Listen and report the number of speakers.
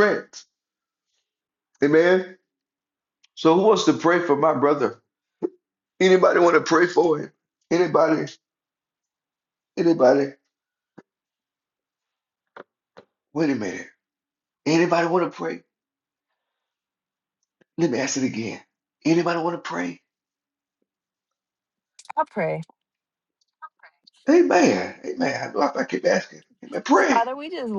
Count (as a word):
two